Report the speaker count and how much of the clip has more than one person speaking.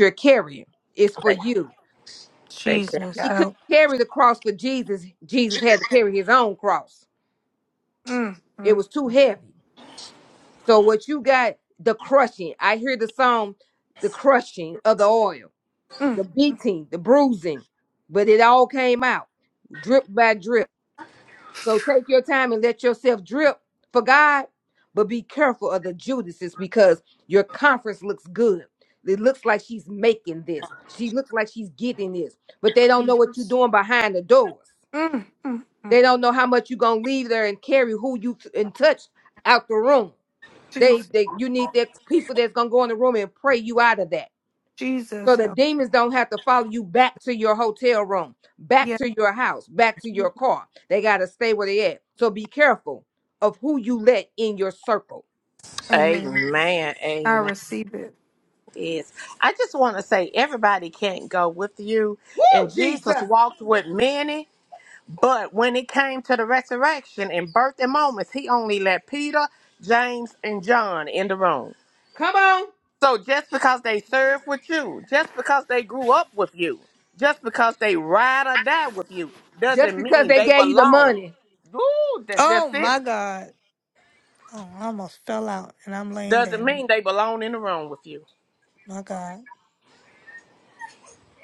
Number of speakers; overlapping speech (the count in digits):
3, about 7%